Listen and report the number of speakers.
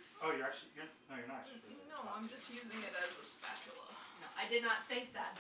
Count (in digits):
3